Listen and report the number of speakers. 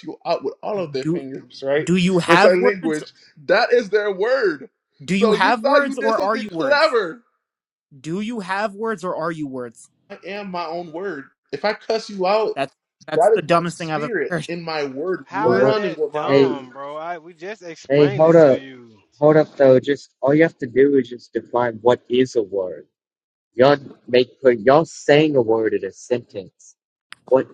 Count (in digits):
4